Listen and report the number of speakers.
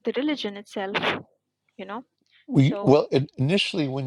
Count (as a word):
two